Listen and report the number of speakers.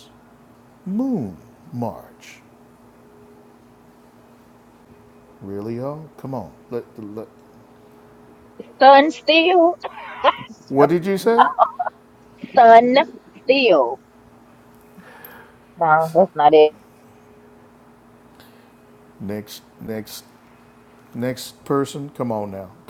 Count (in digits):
2